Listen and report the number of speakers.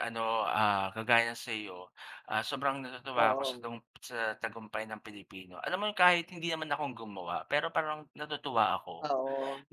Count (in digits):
2